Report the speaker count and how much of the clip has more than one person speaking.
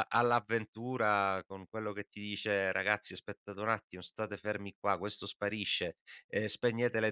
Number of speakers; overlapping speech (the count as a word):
one, no overlap